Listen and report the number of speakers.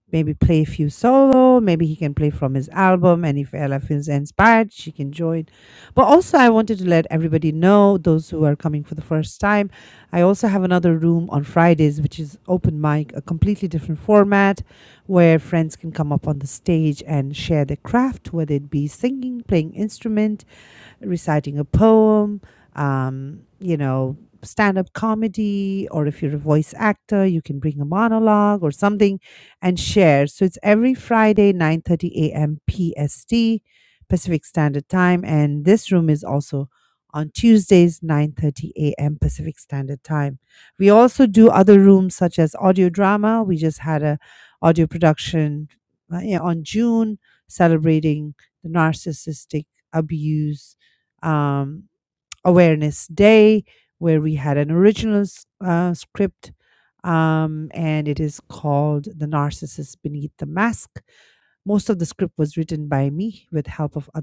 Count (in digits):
1